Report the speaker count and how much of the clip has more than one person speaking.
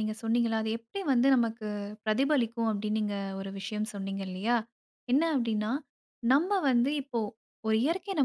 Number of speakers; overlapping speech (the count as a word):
one, no overlap